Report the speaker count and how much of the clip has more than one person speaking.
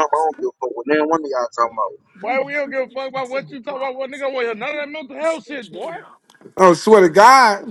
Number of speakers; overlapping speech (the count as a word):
three, no overlap